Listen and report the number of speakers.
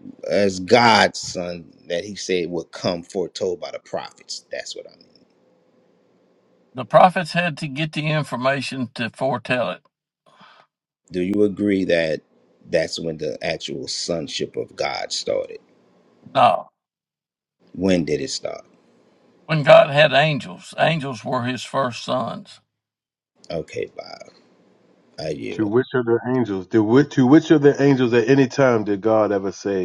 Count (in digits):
3